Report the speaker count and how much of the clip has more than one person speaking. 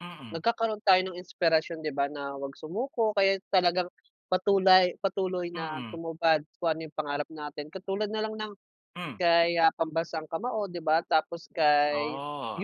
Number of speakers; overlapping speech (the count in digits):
2, about 7%